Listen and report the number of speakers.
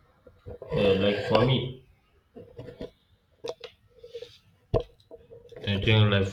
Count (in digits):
1